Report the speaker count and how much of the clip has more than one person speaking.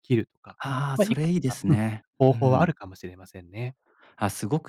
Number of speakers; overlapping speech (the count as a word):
two, about 28%